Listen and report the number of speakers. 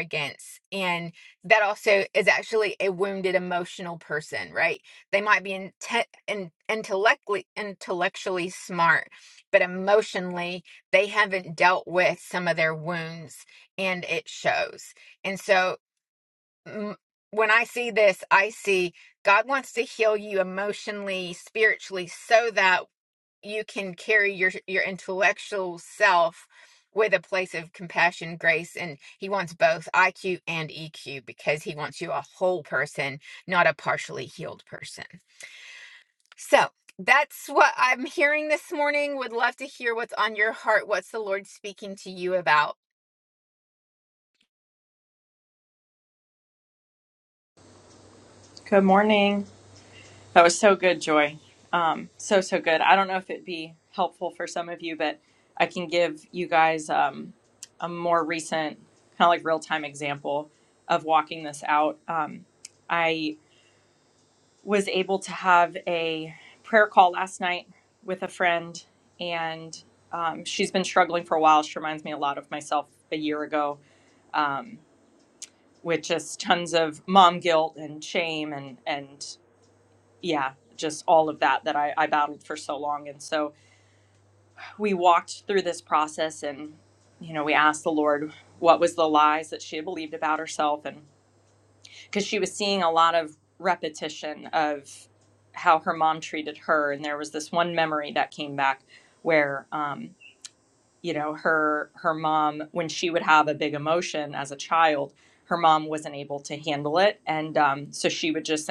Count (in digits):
2